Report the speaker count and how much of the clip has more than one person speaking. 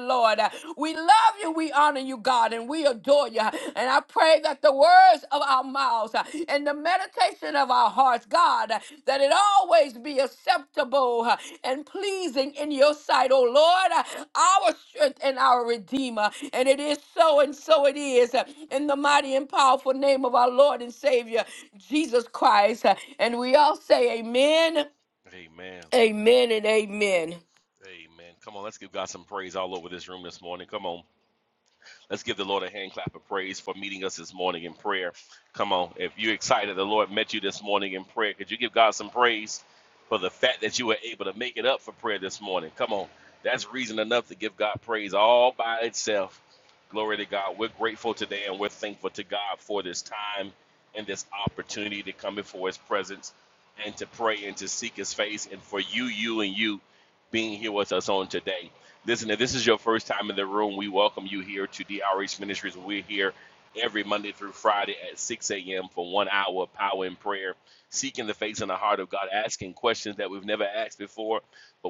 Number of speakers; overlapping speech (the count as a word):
two, no overlap